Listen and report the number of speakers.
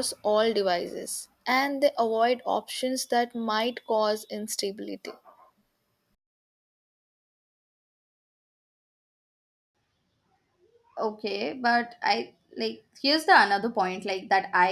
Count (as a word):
two